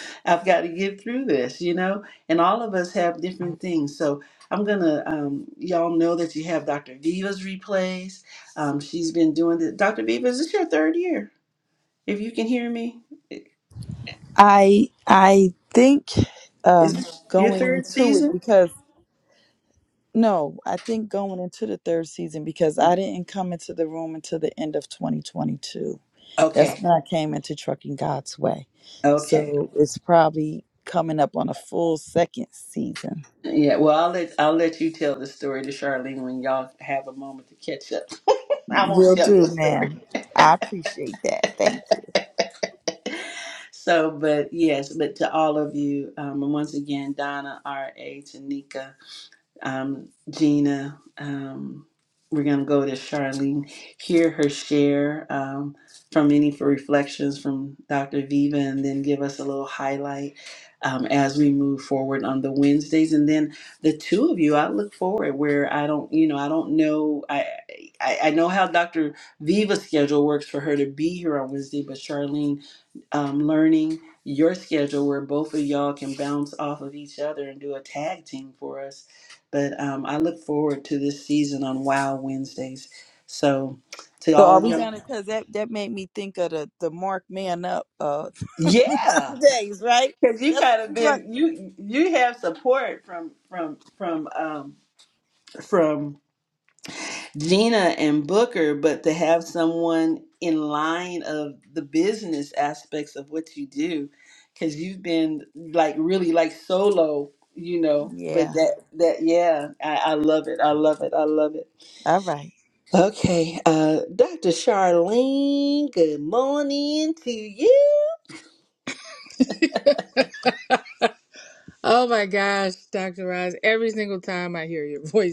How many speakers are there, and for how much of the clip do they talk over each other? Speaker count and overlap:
three, about 4%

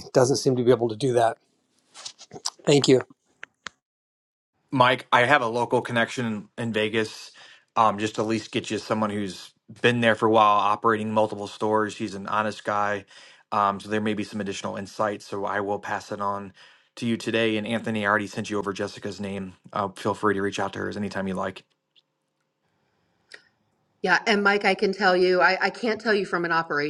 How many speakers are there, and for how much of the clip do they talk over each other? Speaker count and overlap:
three, no overlap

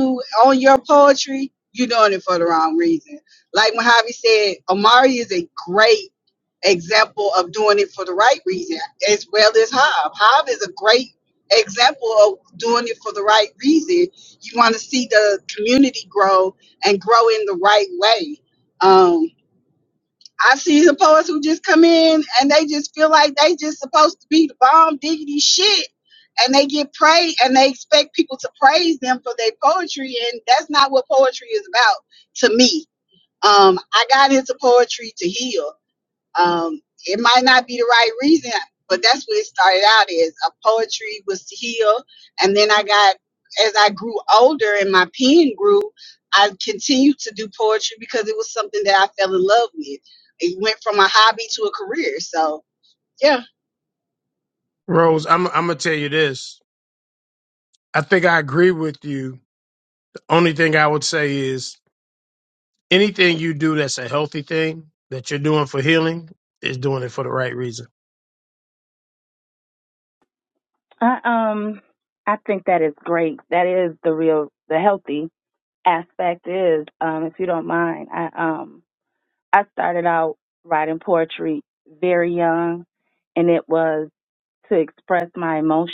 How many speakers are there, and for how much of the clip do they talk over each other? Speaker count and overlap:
three, no overlap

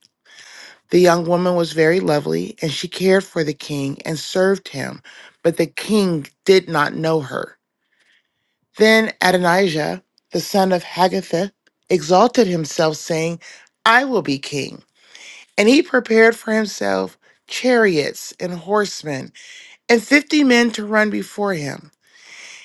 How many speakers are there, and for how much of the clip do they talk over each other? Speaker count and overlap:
one, no overlap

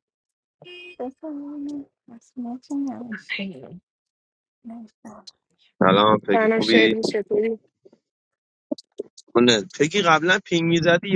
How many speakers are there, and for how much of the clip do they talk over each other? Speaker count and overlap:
three, about 6%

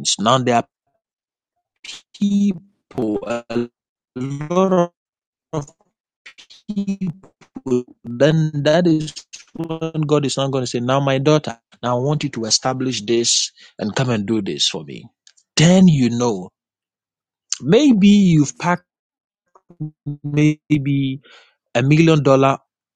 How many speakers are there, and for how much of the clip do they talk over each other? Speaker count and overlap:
one, no overlap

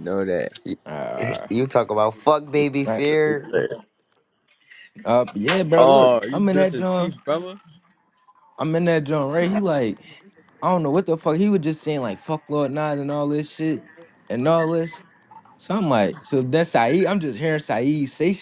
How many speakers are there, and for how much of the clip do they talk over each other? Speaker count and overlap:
three, about 11%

